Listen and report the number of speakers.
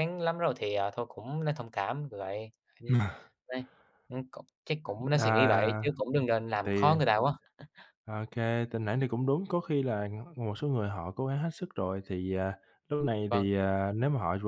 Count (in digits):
2